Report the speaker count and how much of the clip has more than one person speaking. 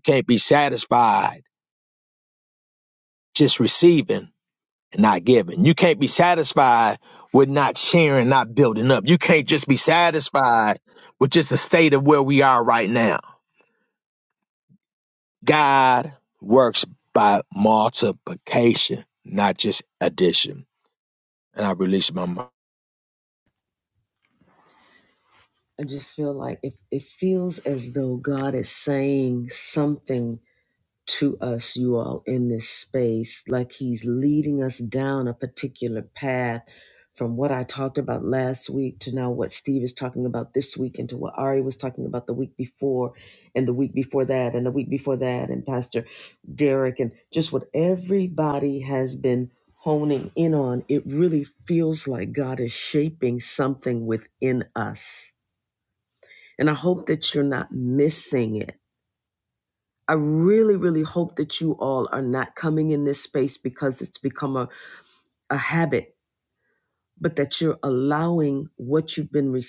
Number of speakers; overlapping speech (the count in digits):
2, no overlap